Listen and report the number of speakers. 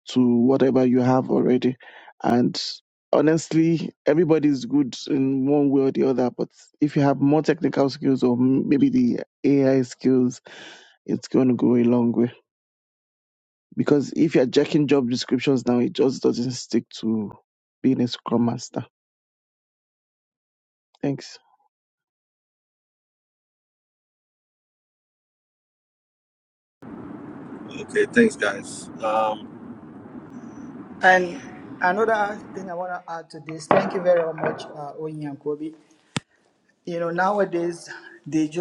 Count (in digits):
3